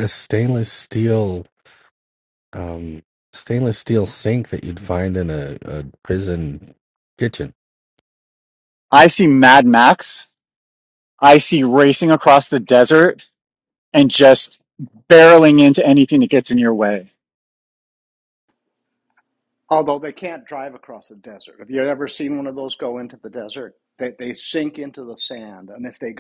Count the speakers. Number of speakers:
3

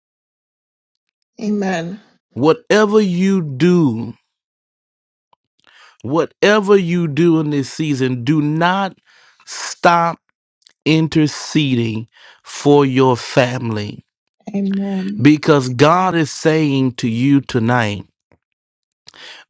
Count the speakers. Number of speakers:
2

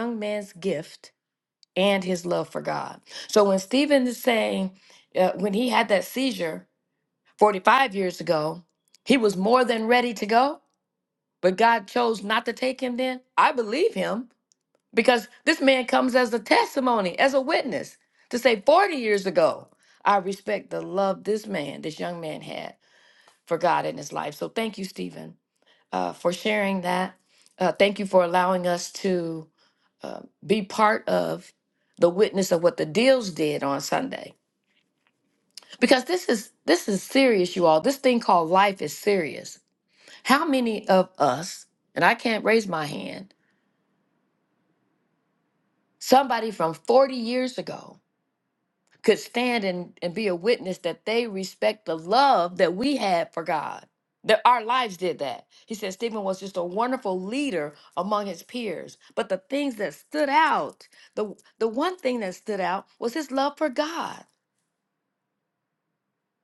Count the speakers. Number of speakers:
1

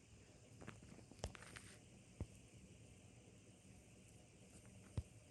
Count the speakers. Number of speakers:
0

